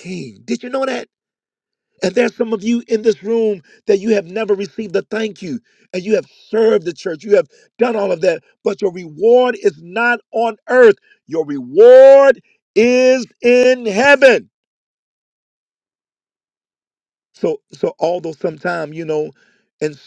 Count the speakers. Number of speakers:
1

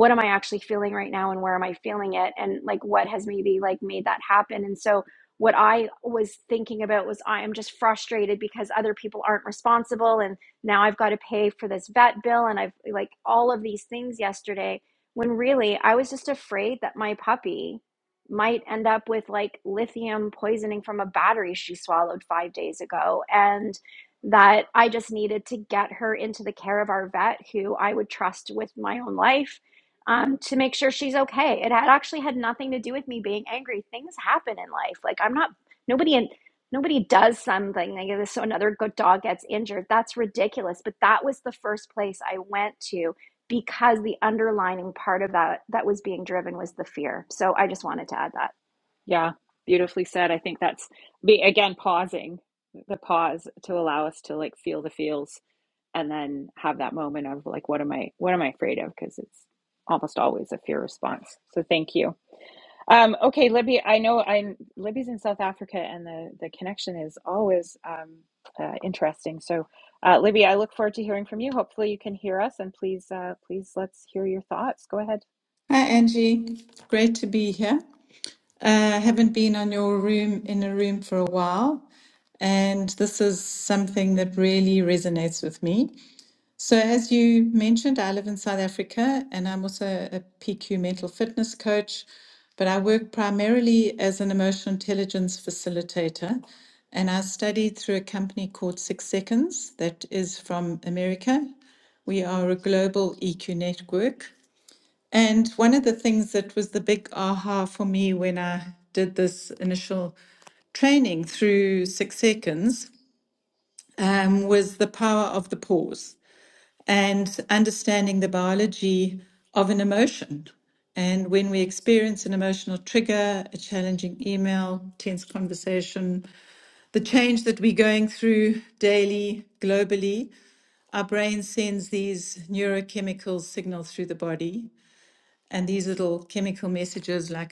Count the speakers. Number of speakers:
3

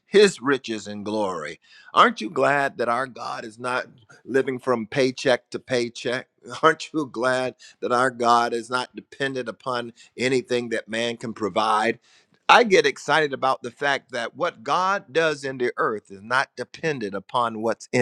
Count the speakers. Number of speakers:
1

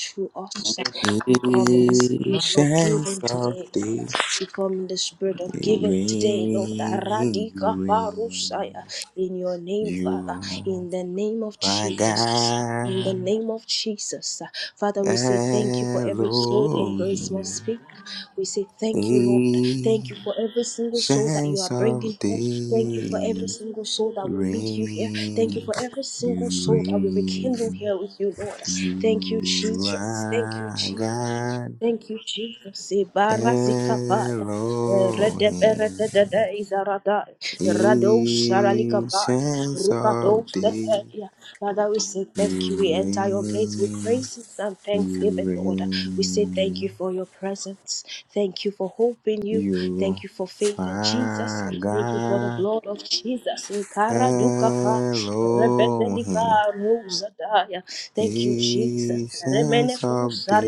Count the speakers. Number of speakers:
2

